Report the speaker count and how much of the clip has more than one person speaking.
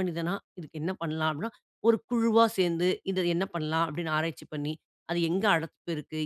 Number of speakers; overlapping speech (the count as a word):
one, no overlap